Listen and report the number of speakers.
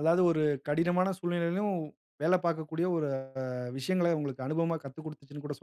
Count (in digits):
1